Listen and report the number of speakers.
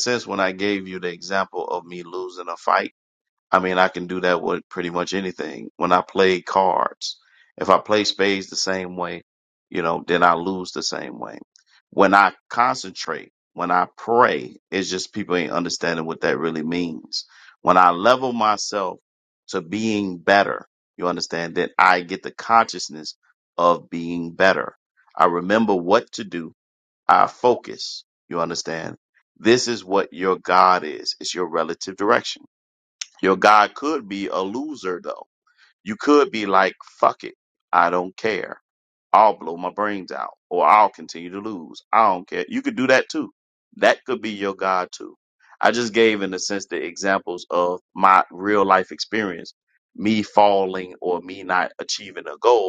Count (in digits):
1